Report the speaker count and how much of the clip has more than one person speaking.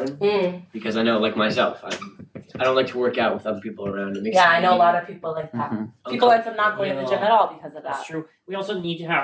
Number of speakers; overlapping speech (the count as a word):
three, about 22%